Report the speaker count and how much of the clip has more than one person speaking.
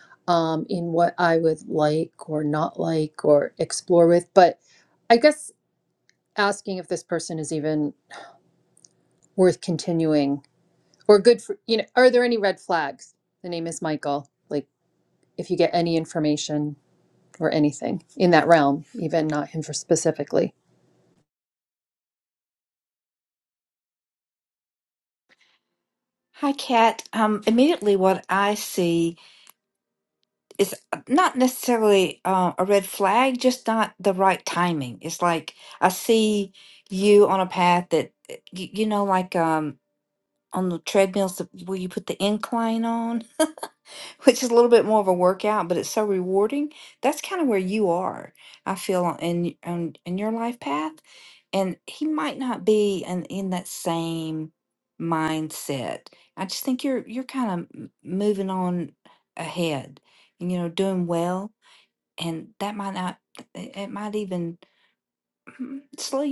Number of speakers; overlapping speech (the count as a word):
two, no overlap